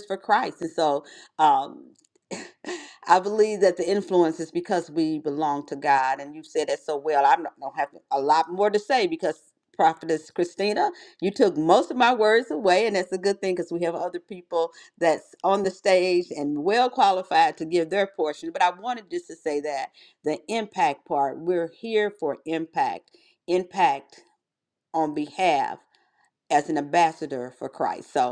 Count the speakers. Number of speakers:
one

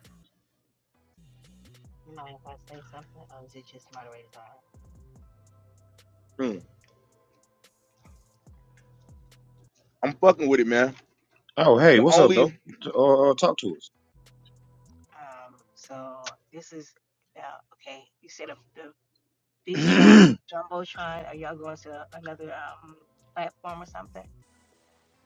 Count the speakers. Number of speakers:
three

